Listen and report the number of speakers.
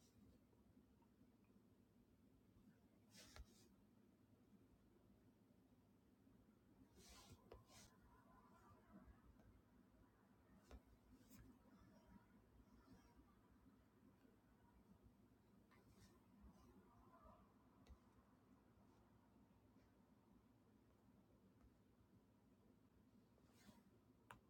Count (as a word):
zero